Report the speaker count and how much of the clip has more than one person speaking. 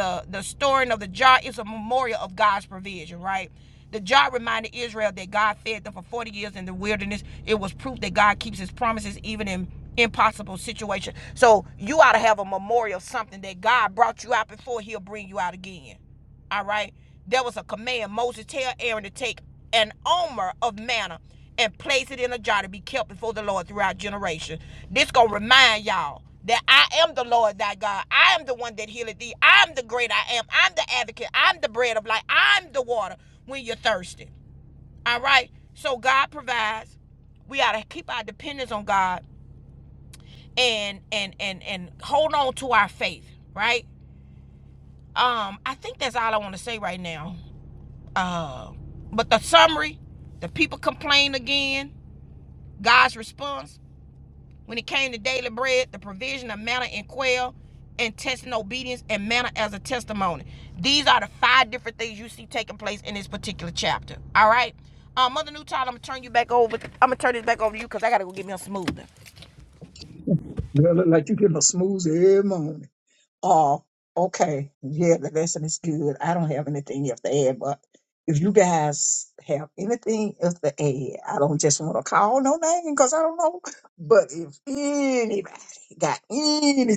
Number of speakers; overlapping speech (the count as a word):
two, no overlap